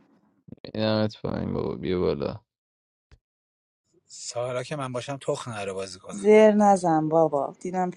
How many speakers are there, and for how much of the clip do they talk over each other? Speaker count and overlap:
three, no overlap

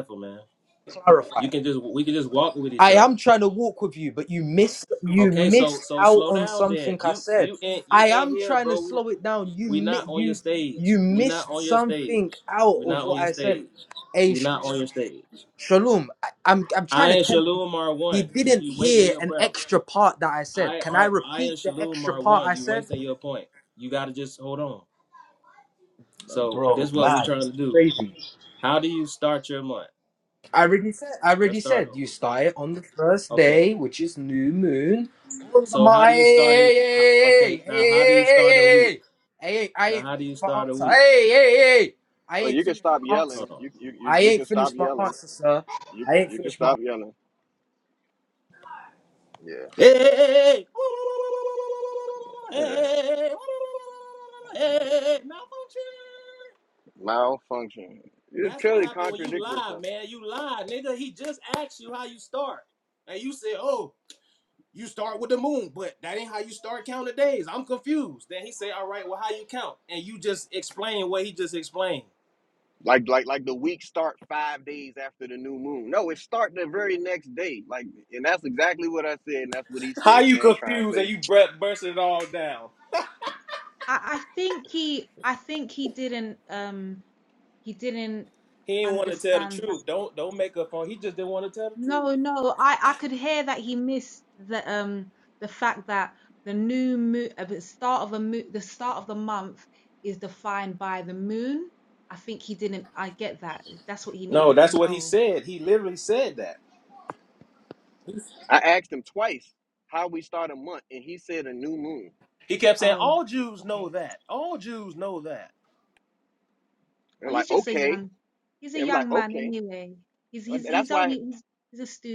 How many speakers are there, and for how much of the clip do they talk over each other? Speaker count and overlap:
four, about 22%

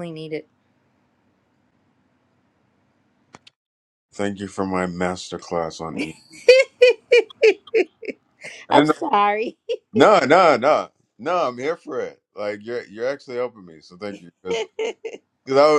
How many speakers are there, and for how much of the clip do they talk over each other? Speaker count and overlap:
two, about 2%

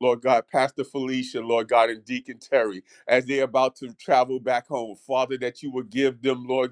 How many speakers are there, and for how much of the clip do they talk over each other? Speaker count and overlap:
one, no overlap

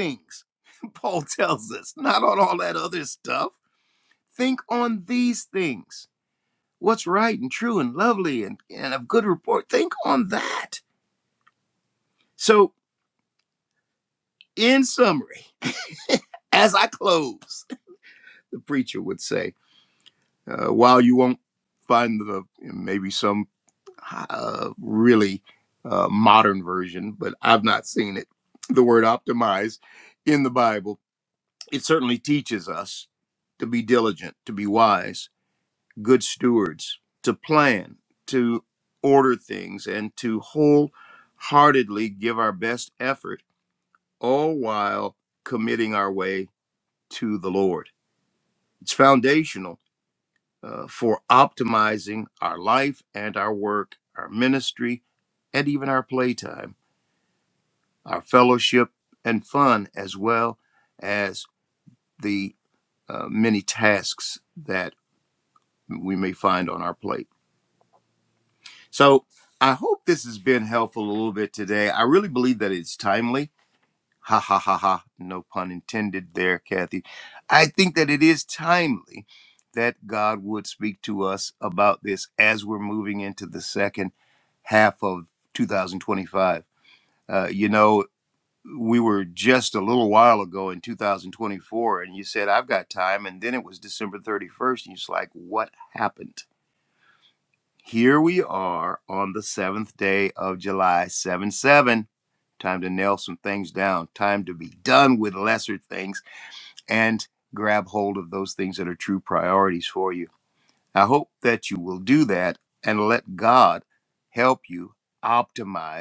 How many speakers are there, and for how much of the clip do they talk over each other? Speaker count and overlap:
one, no overlap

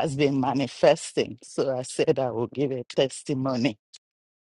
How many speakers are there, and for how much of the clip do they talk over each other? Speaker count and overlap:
one, no overlap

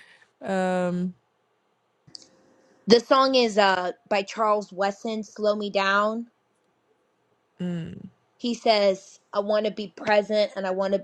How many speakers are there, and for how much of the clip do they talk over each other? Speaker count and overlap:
two, no overlap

